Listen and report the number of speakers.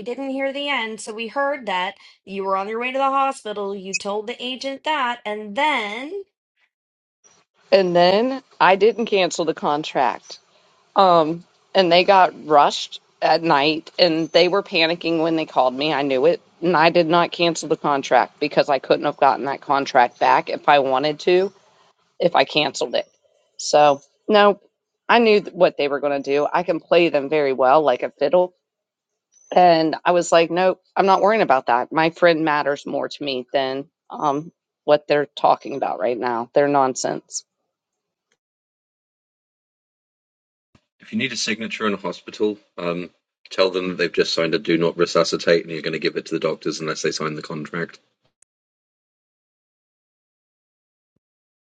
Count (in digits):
3